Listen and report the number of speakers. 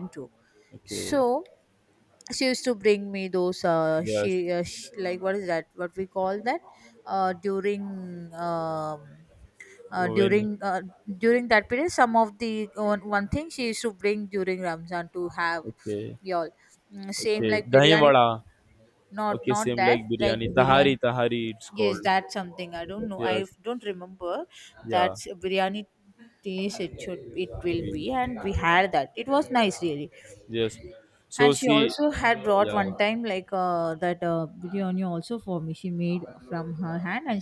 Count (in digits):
2